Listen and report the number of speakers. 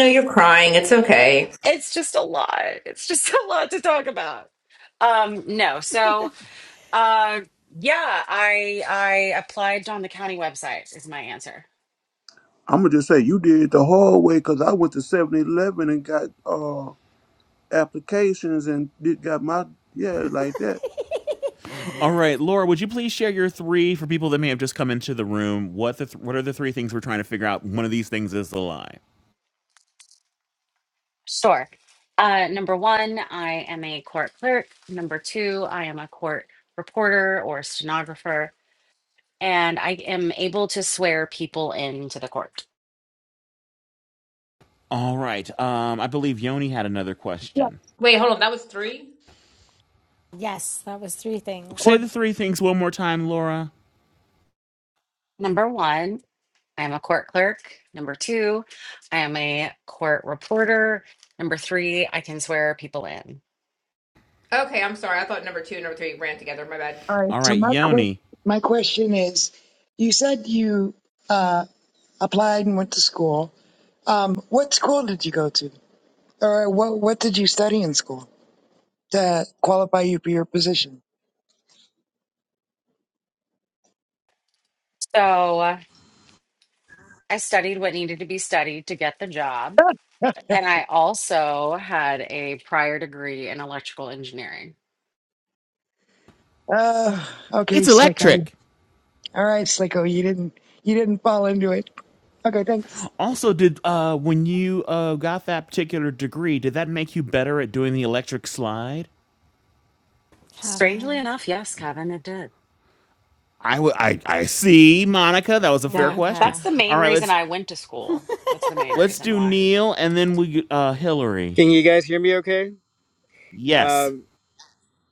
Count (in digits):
7